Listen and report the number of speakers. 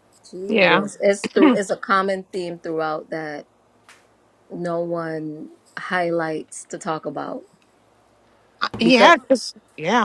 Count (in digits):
2